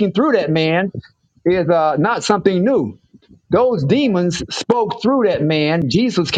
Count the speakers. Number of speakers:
1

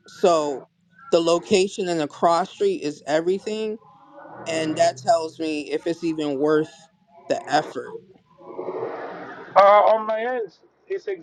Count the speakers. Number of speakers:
2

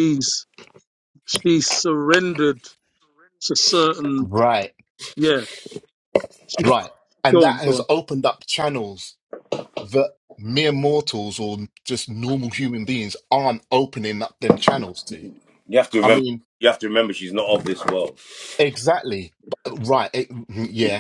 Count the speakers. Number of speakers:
3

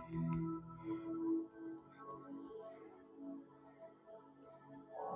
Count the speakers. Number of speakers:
0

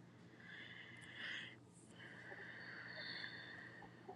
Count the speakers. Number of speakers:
0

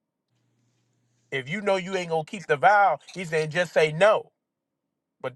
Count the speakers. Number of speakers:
1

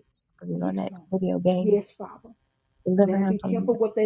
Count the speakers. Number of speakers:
2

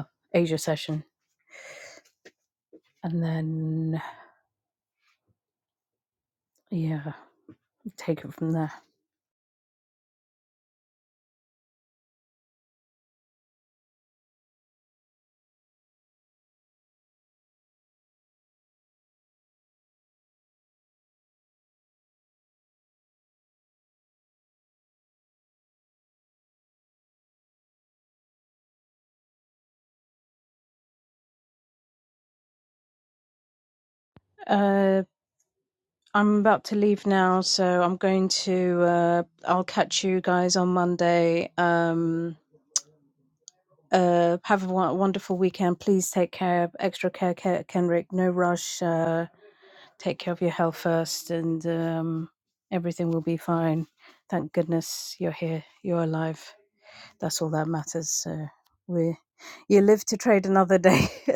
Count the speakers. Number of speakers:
1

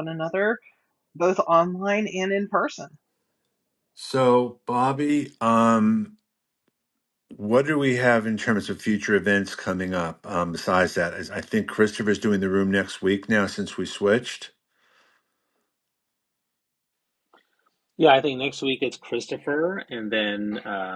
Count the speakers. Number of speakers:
3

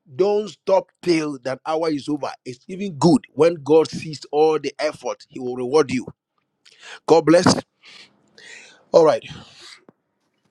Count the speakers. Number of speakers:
1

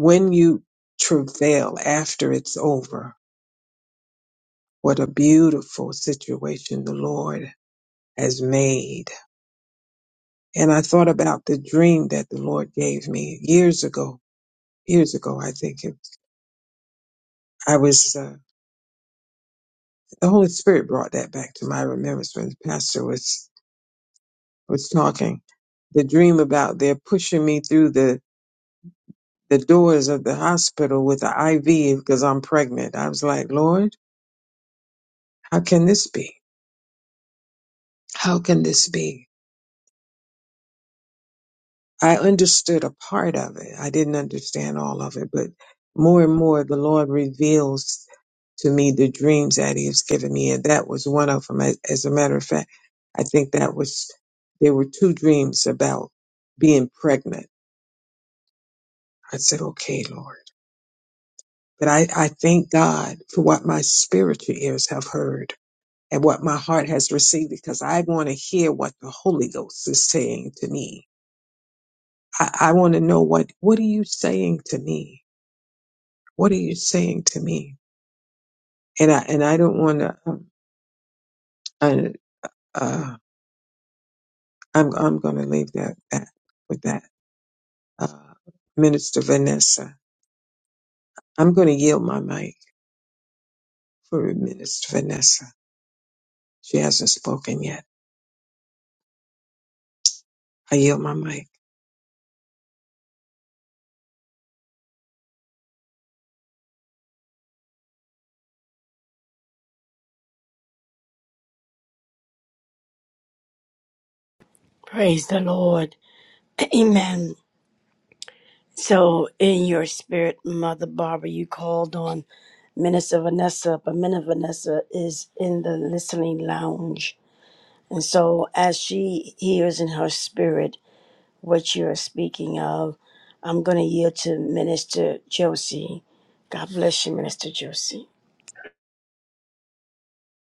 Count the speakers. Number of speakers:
2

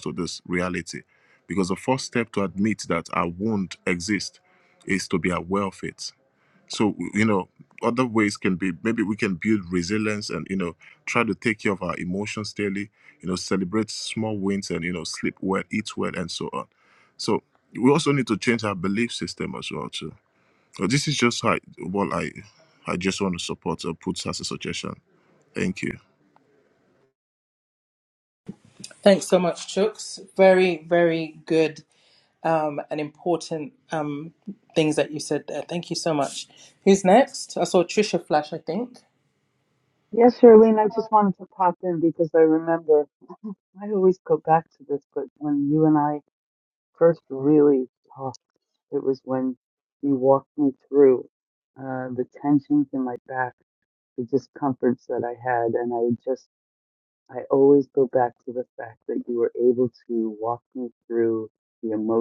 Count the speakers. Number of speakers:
3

